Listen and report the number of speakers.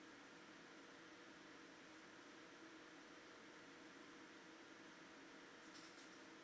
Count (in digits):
0